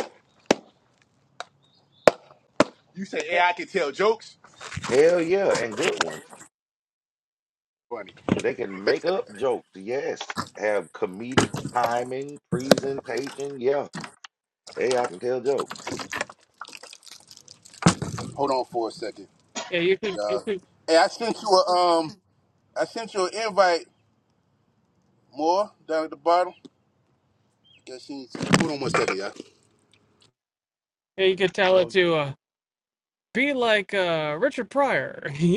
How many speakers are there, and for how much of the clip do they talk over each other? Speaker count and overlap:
3, about 2%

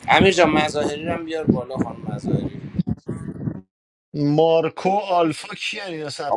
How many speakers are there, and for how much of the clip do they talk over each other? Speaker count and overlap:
2, about 1%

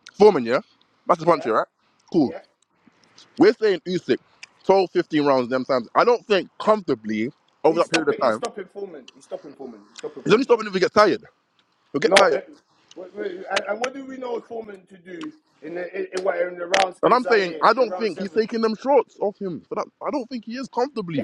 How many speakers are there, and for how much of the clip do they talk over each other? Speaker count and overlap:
2, about 15%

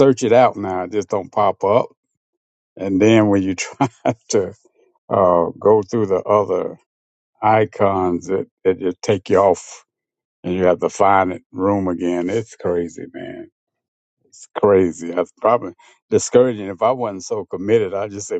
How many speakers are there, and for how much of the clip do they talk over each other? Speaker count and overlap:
1, no overlap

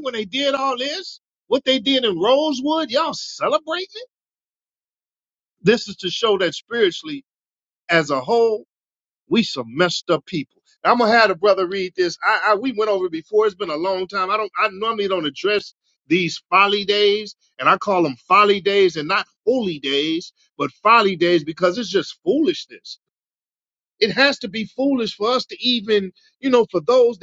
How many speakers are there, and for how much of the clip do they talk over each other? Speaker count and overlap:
1, no overlap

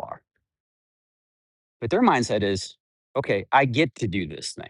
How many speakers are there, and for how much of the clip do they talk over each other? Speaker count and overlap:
1, no overlap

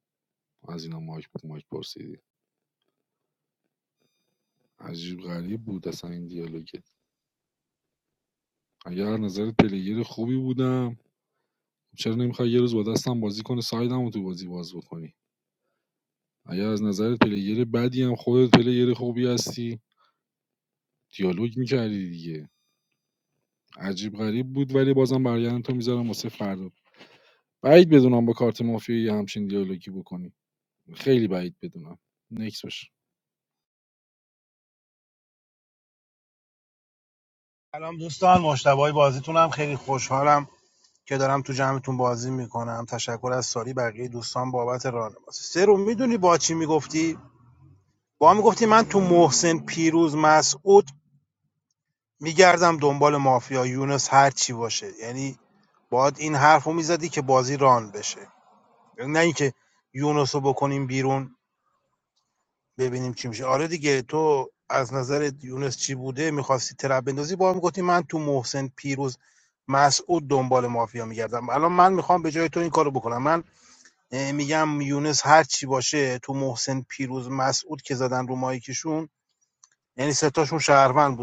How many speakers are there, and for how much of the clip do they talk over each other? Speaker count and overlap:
2, no overlap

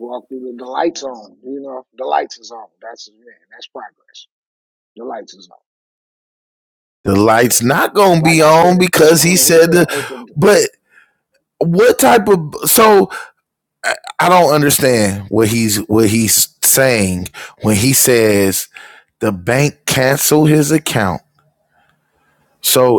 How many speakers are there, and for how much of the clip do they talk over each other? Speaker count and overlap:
2, about 8%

